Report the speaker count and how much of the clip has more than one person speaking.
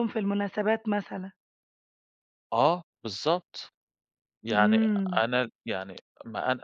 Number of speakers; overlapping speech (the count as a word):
two, about 5%